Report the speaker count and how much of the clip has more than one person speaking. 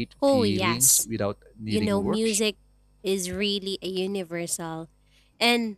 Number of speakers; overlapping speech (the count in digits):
2, about 27%